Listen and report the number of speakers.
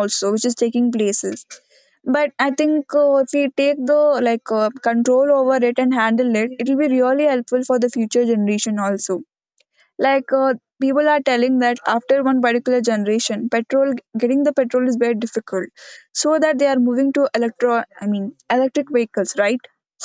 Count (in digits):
1